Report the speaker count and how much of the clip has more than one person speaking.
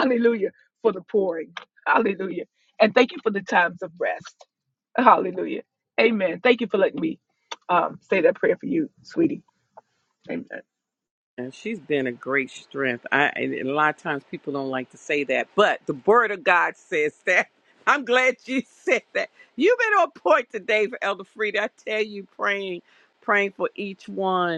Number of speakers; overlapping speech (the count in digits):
2, no overlap